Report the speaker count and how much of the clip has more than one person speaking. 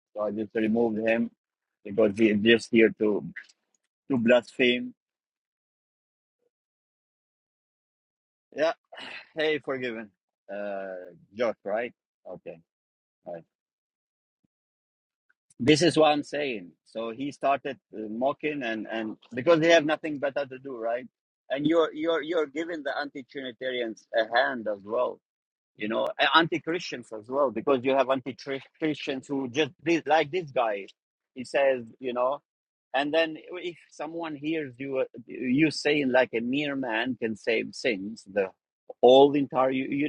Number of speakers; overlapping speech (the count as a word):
one, no overlap